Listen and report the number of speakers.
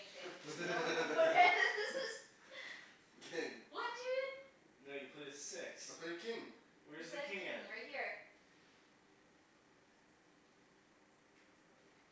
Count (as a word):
three